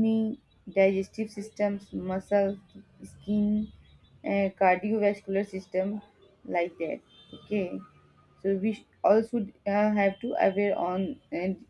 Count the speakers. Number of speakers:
1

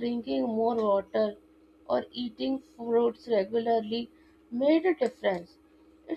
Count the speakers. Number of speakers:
1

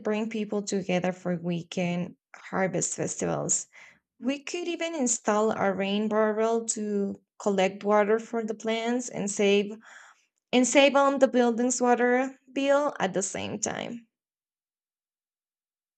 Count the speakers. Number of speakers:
1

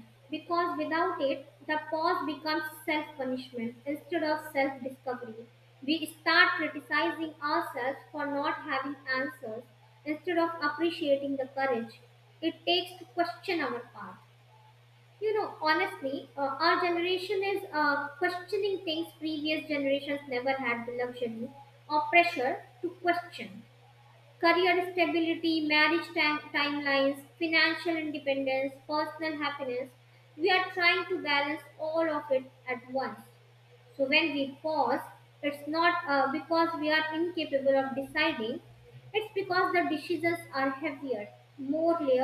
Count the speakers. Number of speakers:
1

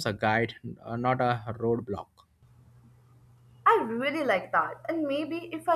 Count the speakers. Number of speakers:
2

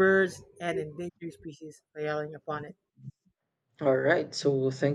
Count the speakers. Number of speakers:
2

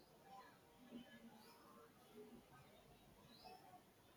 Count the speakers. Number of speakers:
0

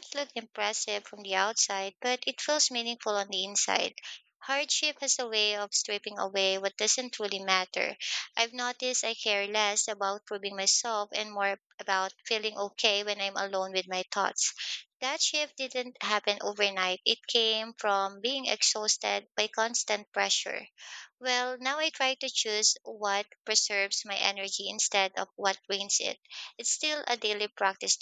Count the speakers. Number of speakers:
1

